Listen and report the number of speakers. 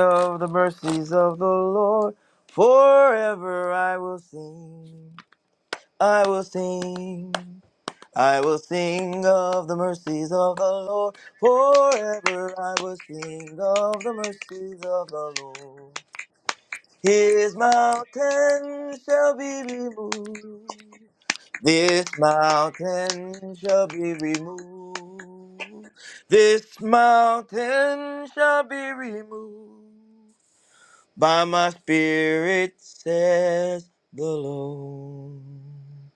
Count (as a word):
one